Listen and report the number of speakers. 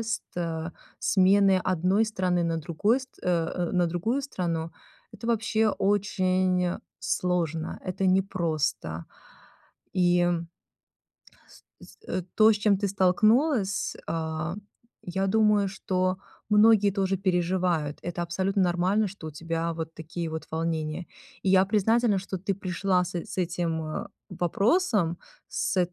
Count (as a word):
one